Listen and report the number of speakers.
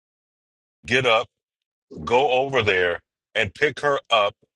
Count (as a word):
one